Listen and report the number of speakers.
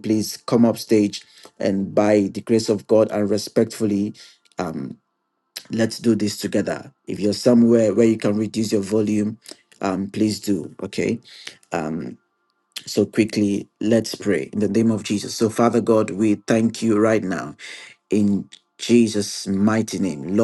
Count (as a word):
one